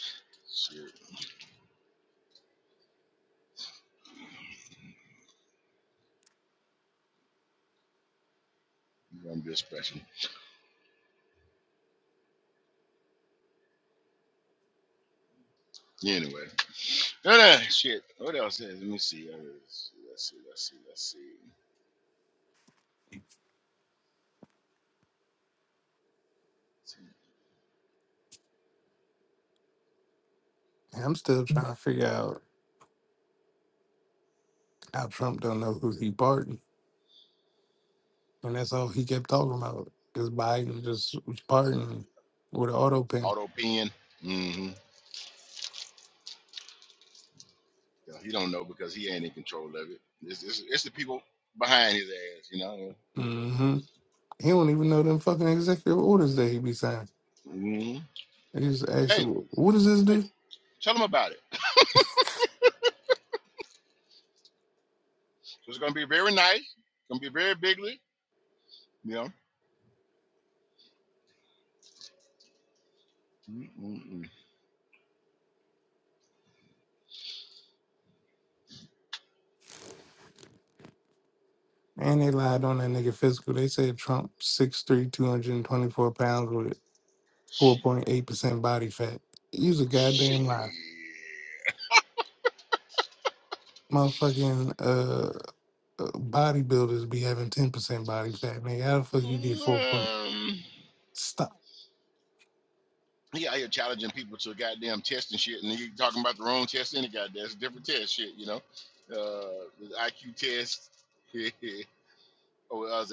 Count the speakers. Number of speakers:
2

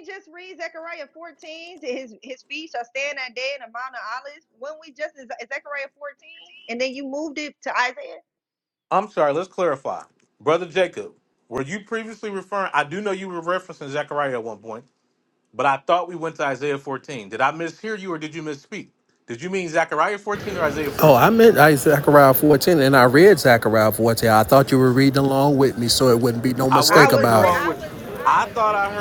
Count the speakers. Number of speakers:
3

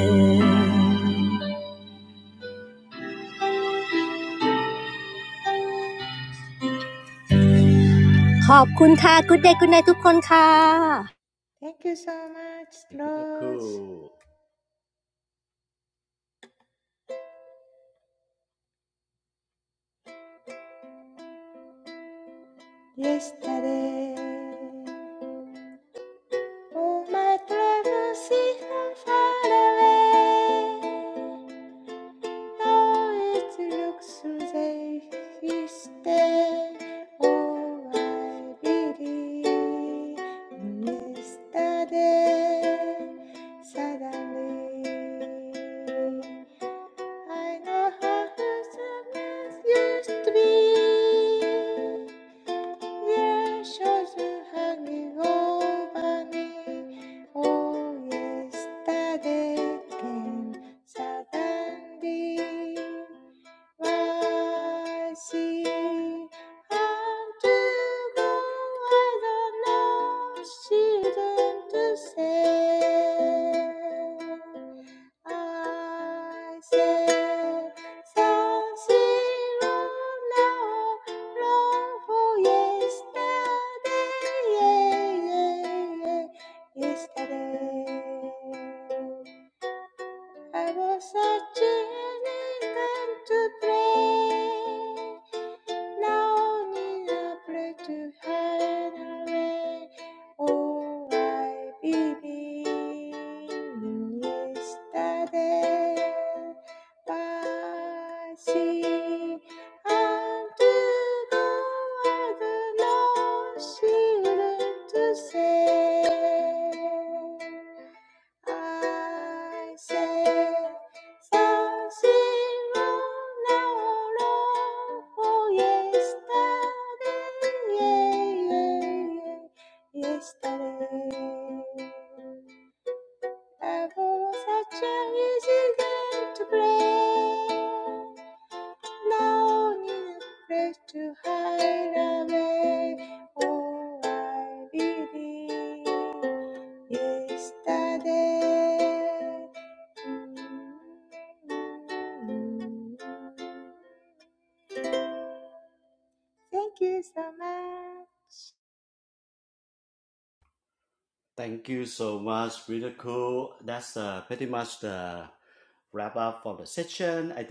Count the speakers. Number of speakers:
3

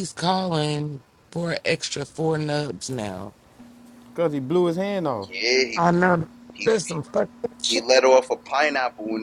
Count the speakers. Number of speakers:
3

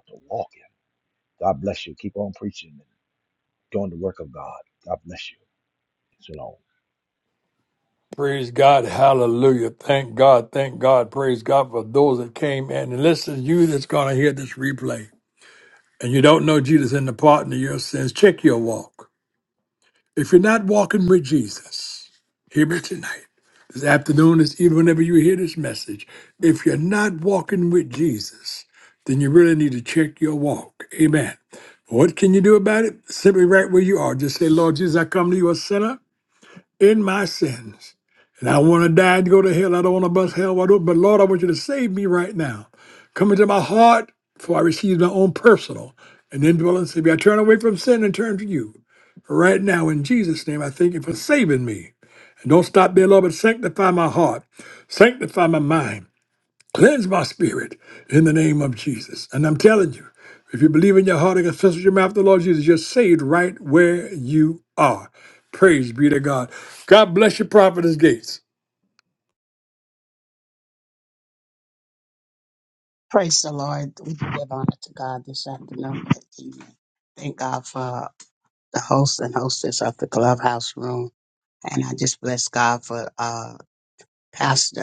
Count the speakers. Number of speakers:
3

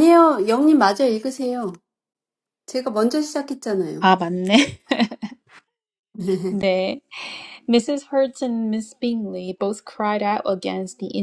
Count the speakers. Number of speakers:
2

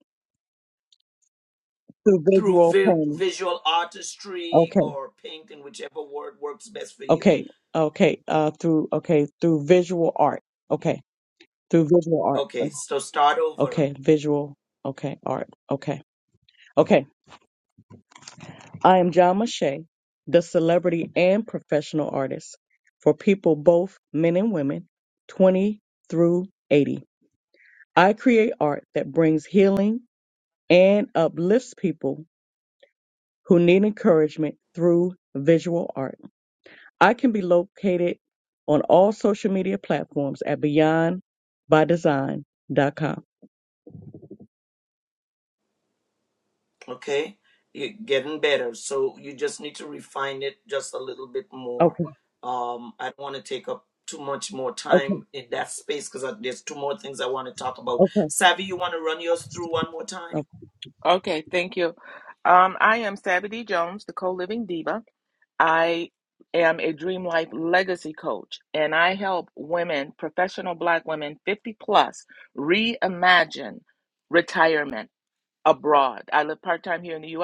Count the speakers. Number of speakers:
3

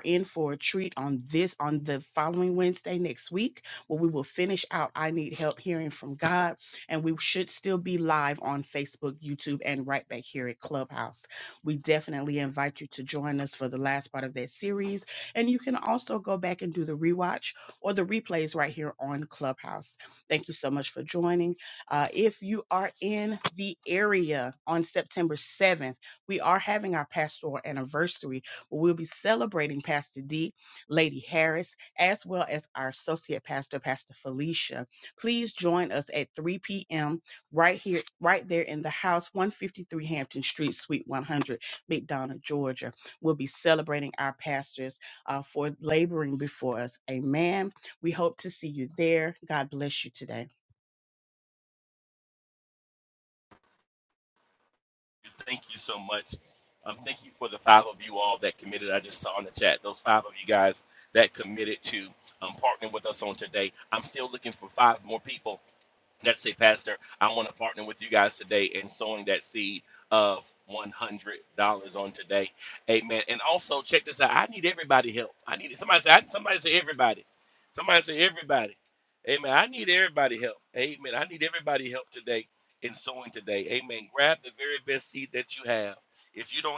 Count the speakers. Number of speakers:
2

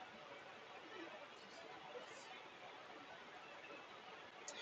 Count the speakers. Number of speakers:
0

